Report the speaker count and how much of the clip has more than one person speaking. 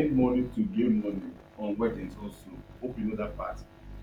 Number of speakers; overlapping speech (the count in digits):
1, no overlap